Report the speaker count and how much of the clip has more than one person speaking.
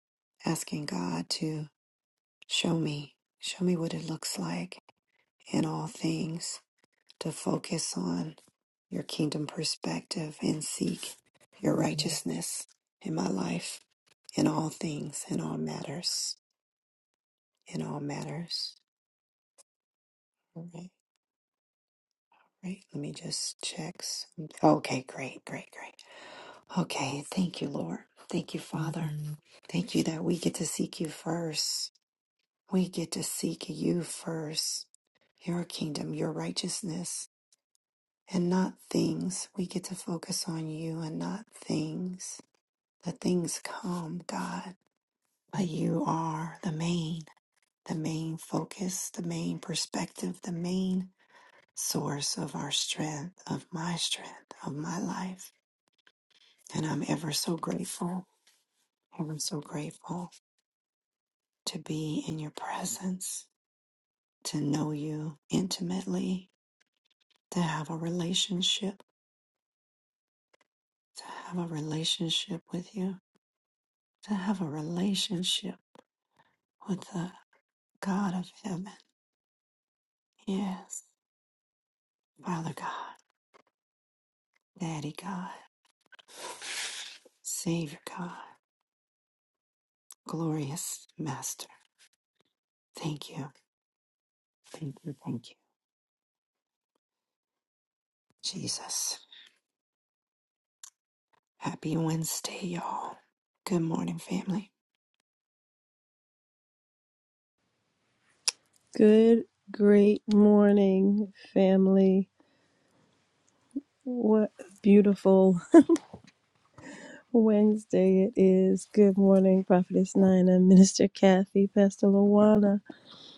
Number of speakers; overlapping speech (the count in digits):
2, no overlap